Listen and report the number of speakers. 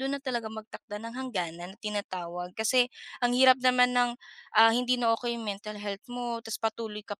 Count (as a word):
one